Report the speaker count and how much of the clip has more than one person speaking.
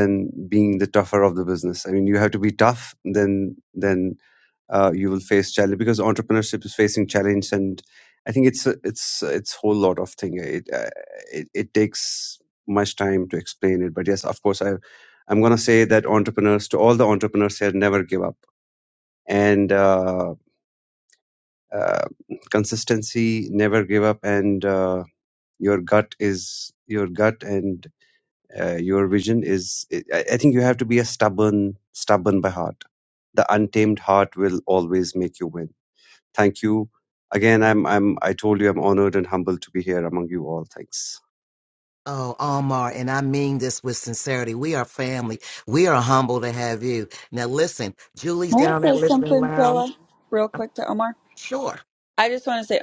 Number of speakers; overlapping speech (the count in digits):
3, about 3%